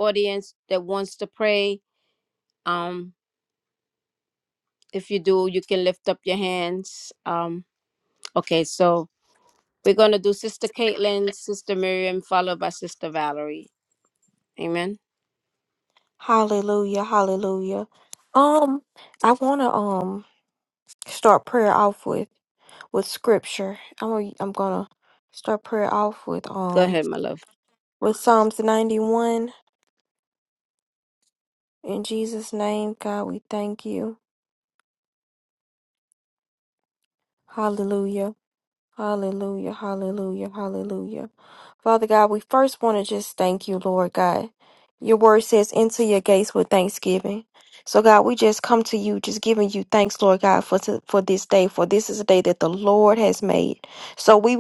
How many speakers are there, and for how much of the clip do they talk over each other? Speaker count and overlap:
2, under 1%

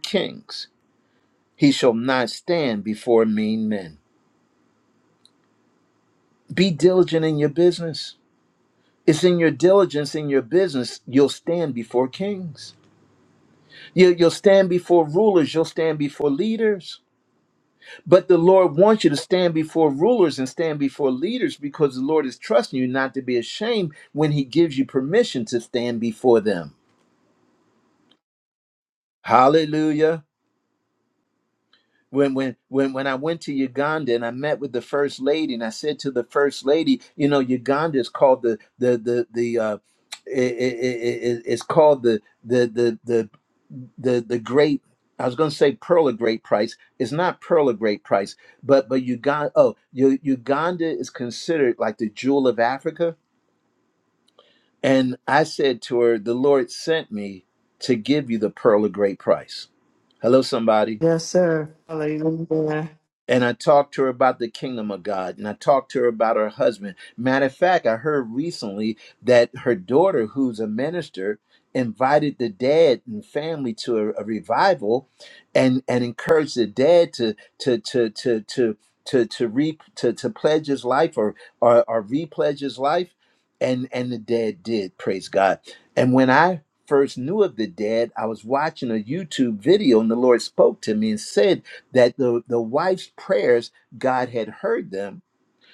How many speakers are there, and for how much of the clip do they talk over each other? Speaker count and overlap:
2, no overlap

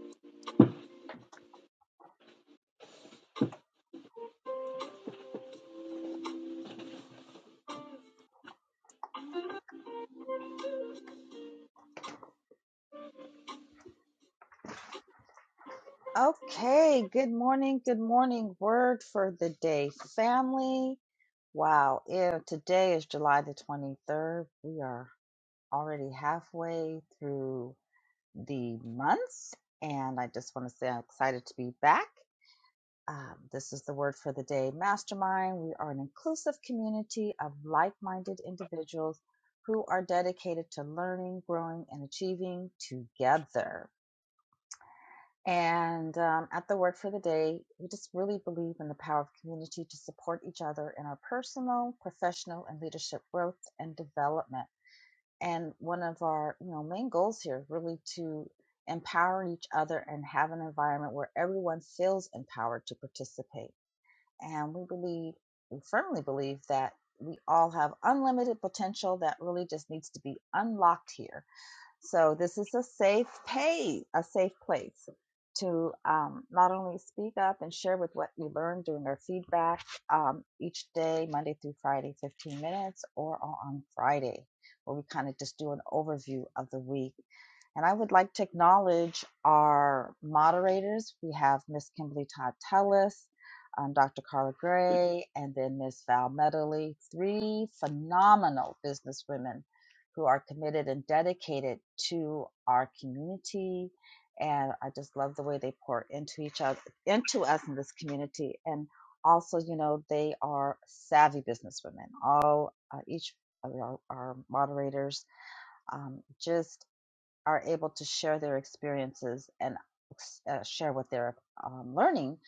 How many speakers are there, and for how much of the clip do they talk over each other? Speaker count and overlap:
1, no overlap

